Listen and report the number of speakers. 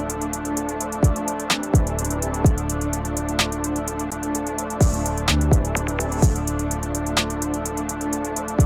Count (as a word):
zero